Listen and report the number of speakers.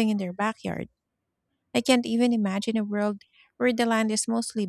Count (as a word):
one